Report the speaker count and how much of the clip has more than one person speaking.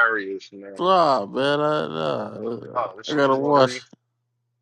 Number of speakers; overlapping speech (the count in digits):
2, about 16%